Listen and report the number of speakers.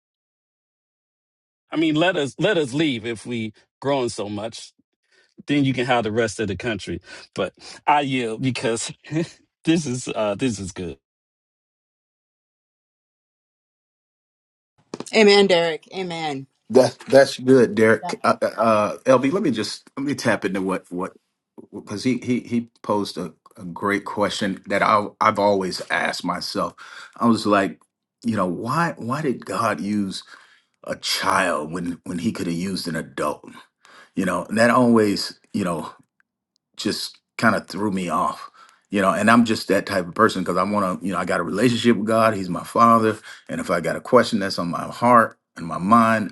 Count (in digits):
3